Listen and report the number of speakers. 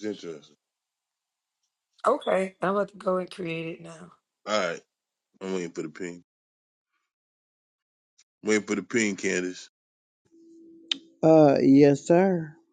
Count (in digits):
3